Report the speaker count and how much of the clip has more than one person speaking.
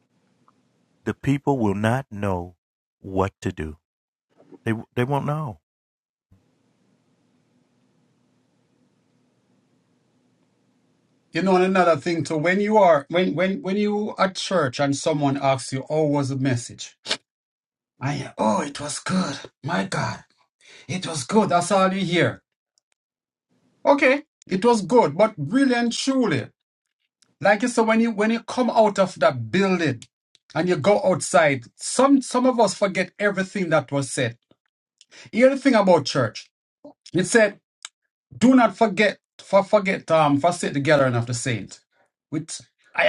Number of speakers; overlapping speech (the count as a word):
two, no overlap